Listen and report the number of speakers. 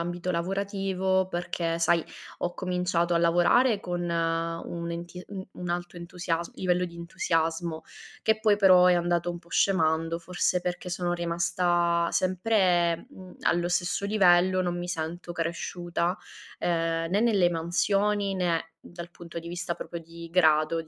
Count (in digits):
1